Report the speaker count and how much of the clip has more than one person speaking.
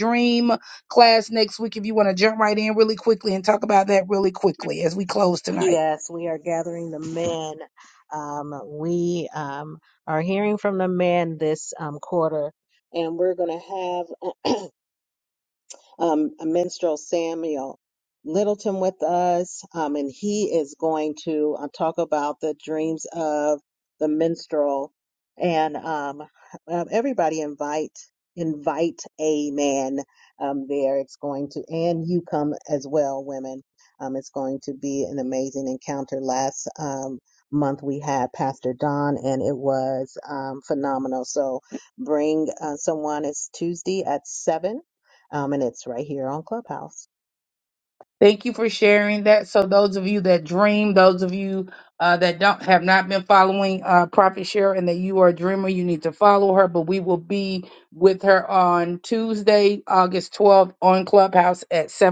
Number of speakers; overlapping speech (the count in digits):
2, under 1%